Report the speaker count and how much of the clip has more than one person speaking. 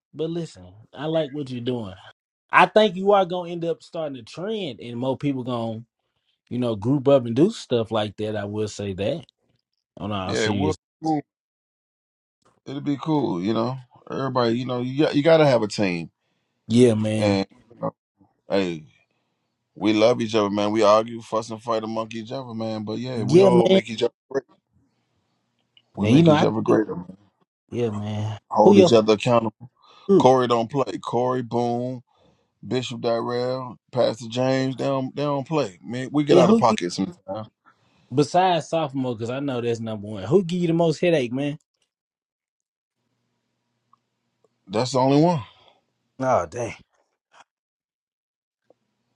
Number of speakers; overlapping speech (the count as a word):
two, about 6%